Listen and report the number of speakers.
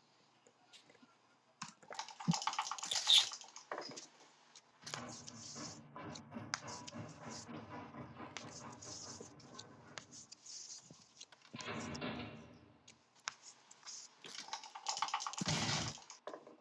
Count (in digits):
0